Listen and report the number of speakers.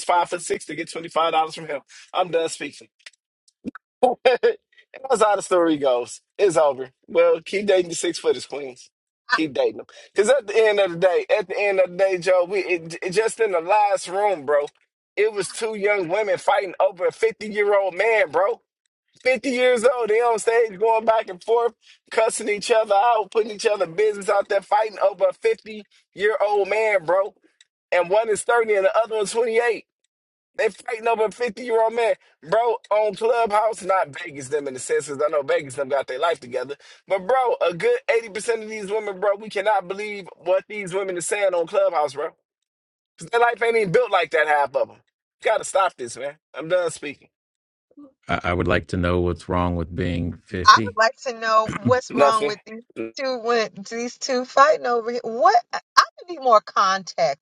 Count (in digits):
3